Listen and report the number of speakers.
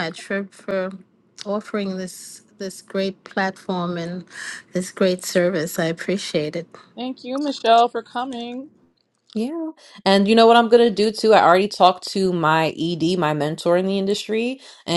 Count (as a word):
three